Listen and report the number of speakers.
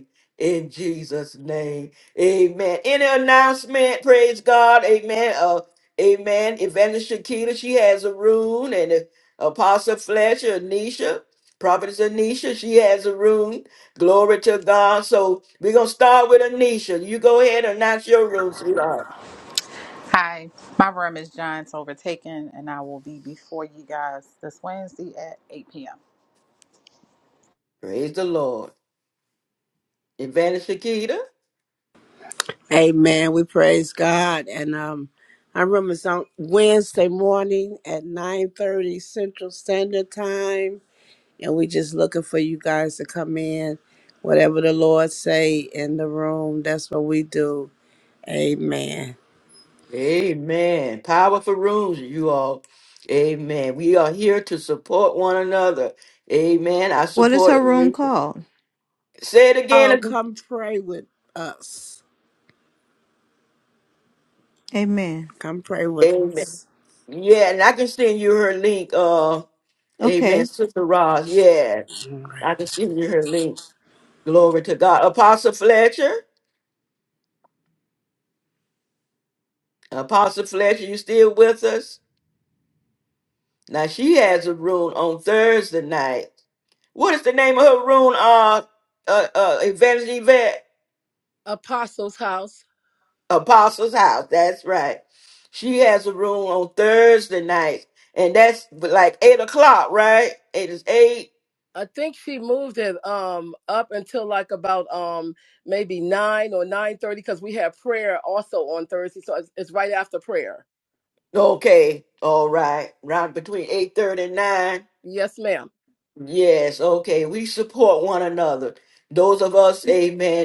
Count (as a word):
five